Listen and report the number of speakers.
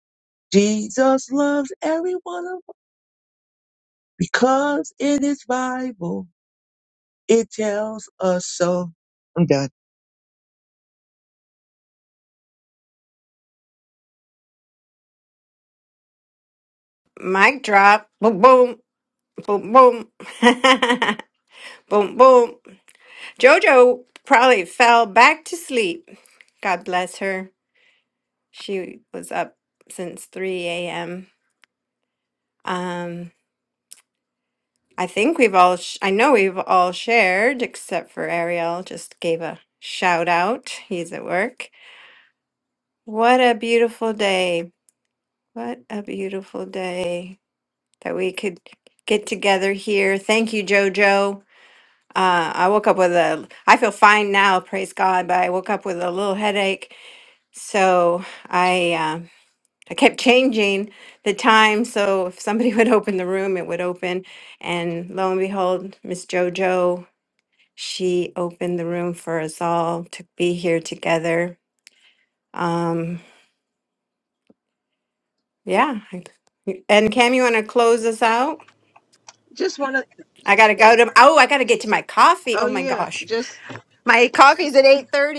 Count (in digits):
3